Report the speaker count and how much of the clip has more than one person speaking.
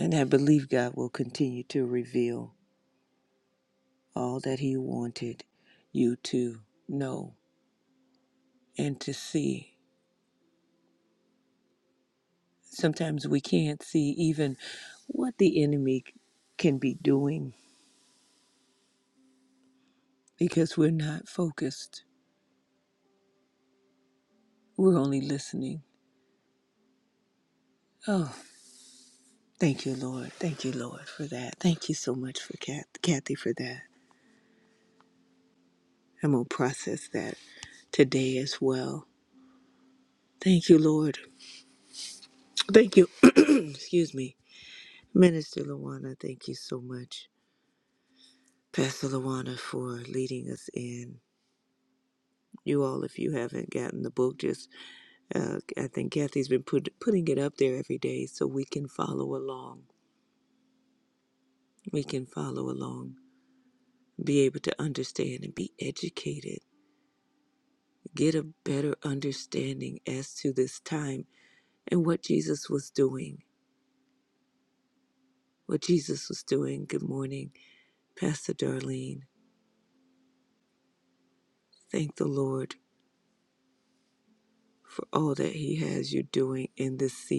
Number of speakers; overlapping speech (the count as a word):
one, no overlap